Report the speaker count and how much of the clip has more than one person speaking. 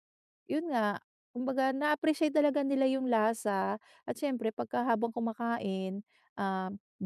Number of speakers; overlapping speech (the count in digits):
1, no overlap